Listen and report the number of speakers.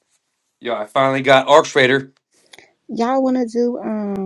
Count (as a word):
two